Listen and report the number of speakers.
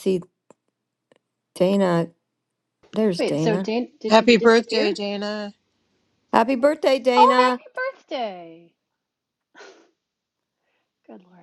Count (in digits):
3